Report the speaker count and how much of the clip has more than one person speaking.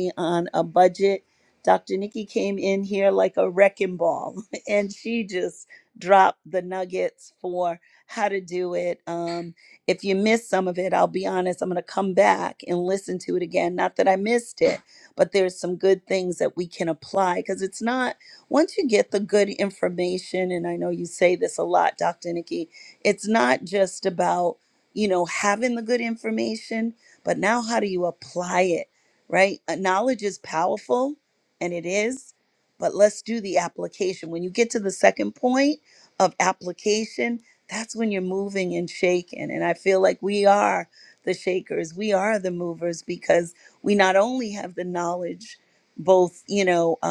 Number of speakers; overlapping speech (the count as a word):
one, no overlap